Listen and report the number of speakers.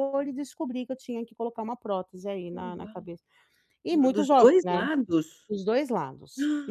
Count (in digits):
2